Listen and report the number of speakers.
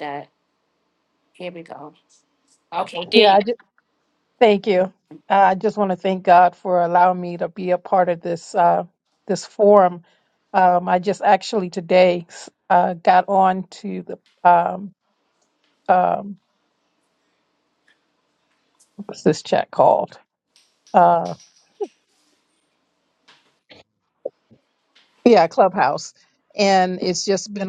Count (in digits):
2